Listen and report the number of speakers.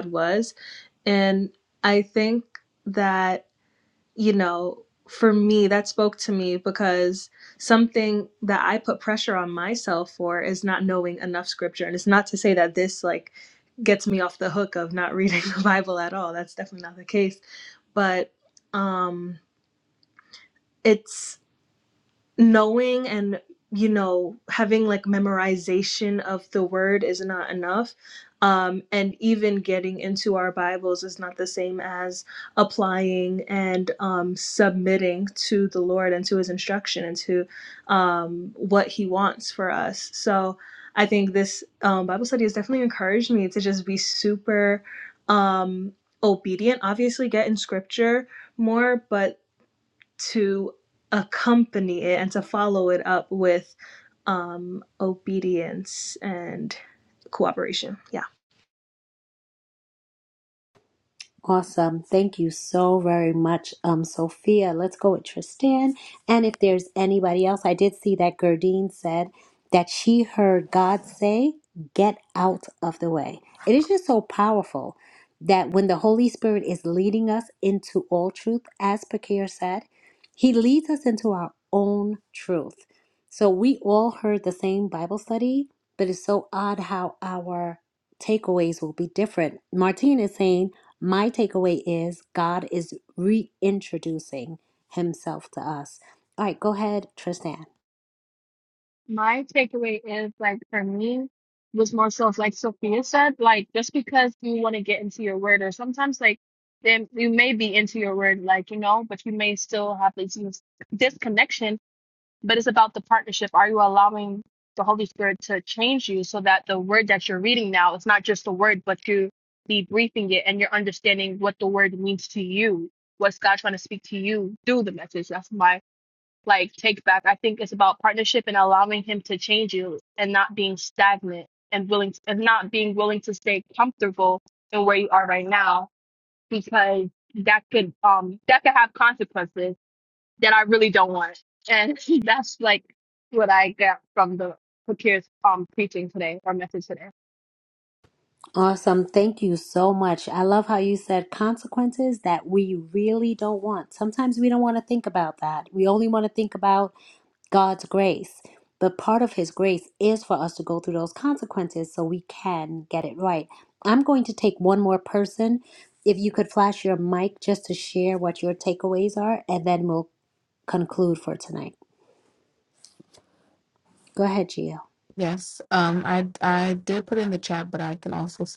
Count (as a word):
four